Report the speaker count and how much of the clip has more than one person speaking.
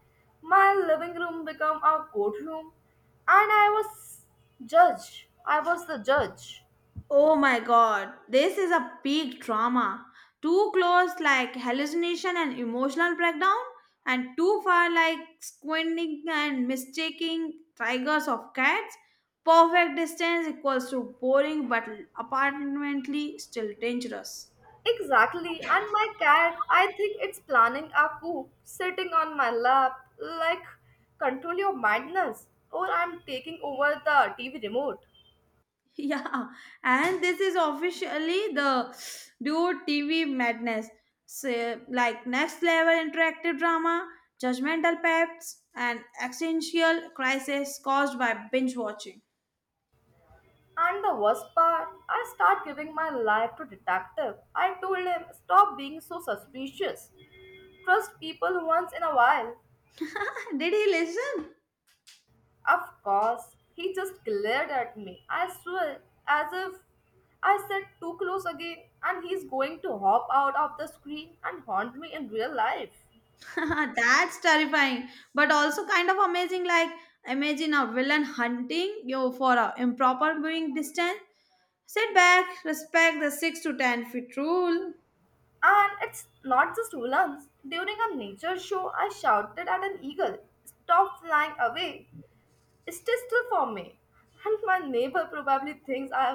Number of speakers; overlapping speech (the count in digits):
2, no overlap